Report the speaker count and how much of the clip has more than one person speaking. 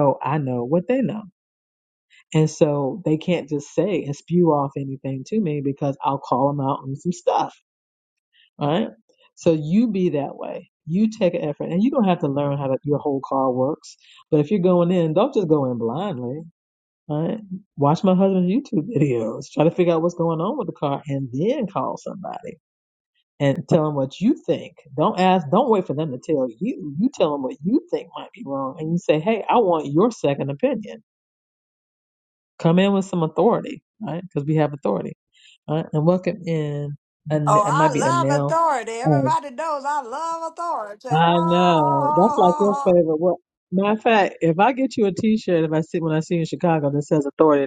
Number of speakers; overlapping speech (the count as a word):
two, about 5%